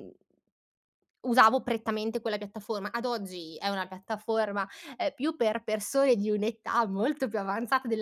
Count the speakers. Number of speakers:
1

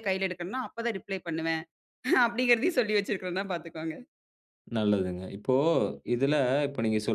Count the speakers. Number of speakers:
2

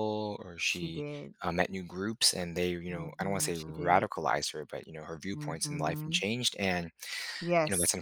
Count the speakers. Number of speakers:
2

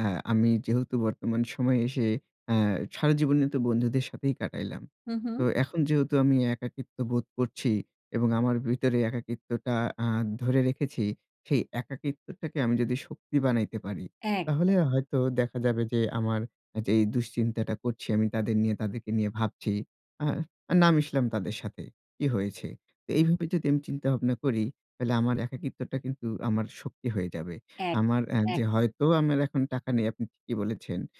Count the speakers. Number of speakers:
2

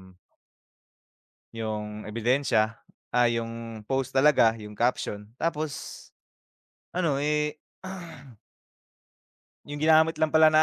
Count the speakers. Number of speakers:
1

